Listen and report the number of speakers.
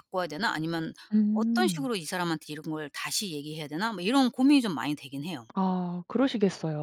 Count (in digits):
2